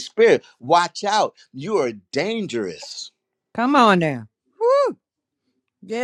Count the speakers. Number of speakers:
2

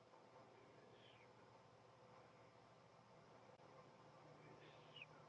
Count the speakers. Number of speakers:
0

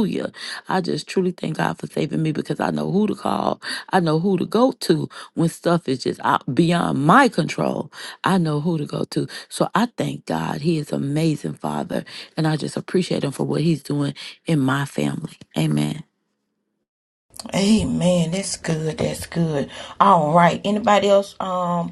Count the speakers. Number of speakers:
2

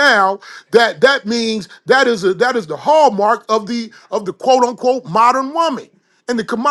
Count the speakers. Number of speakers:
1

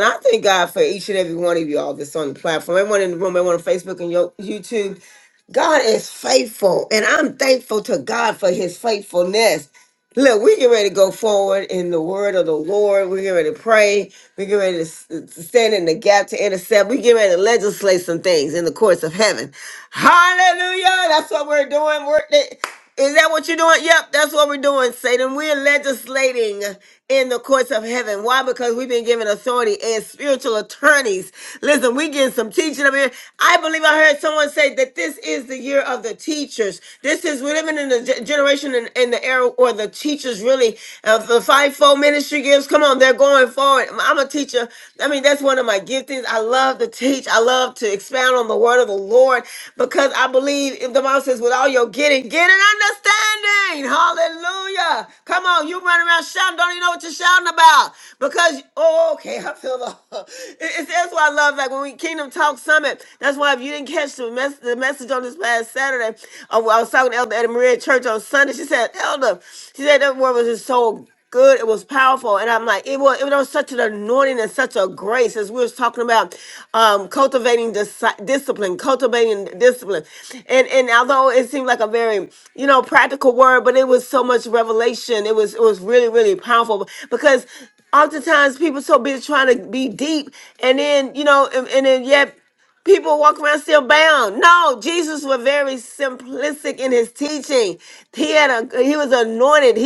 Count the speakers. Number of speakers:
1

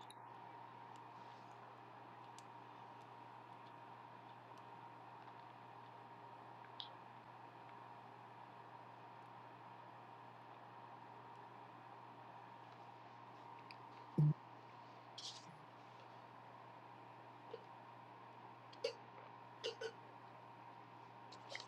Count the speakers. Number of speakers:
0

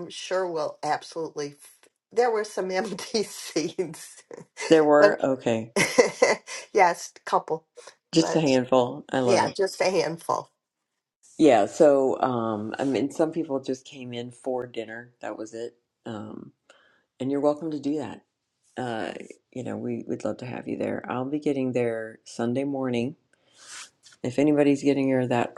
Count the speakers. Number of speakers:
2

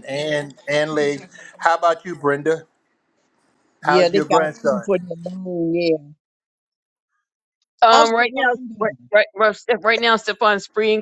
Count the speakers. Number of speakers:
3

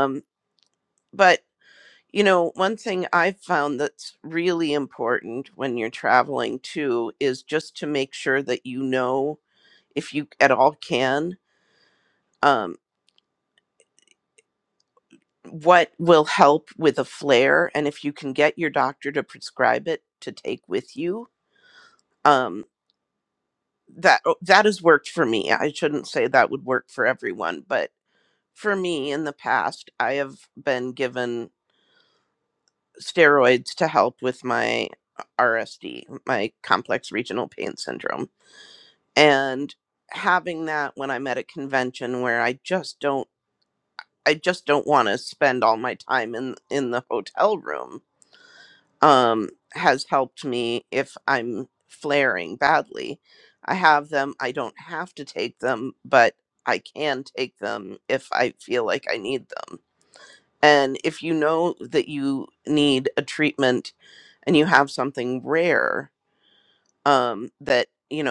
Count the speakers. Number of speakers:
1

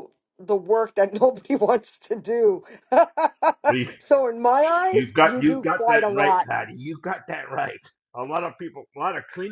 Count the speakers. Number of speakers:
2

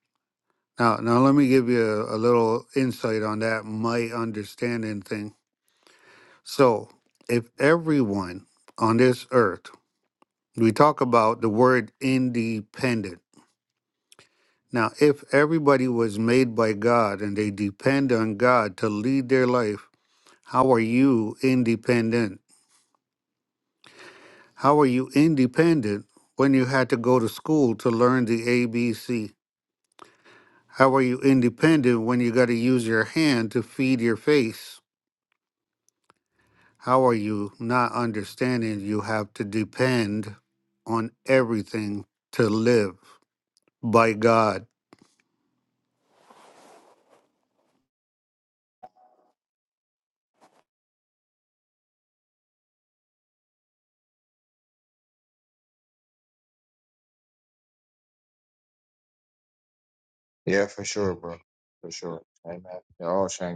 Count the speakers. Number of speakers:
2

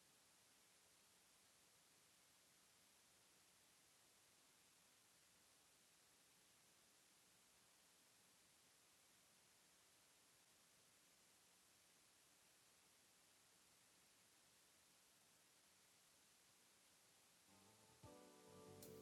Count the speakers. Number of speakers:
0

